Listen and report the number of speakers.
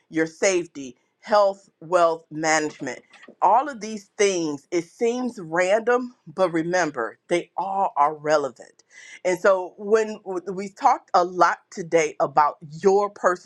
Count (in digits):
1